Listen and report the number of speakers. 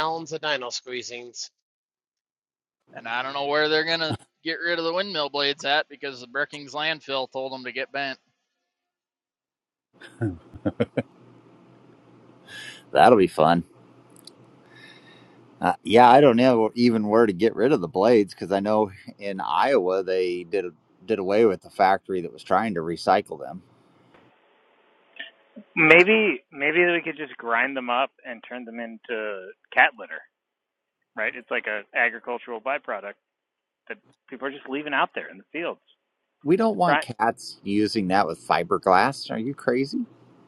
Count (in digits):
4